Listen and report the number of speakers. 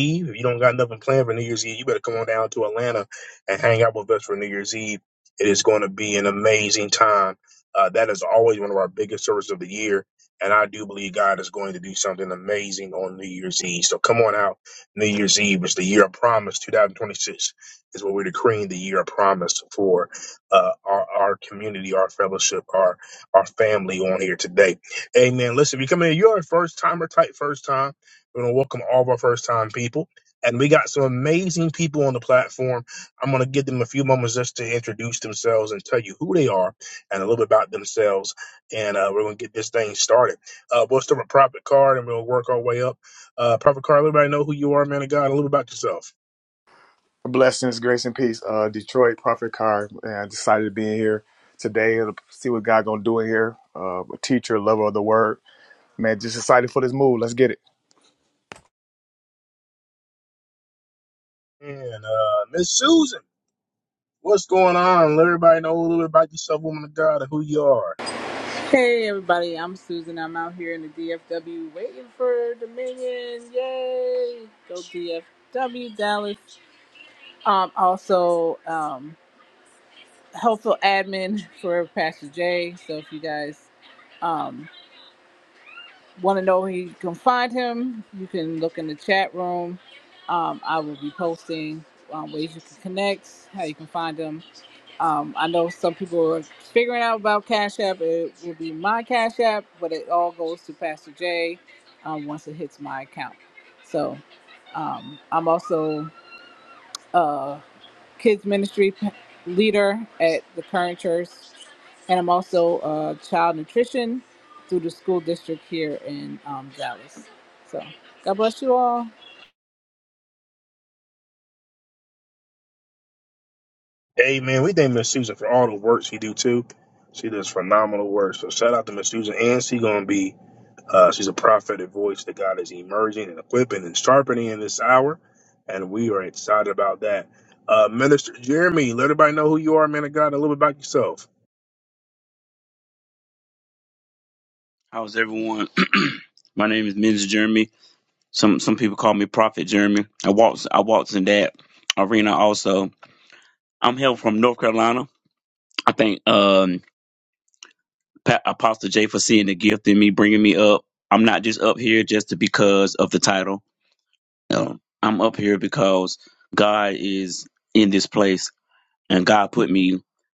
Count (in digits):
4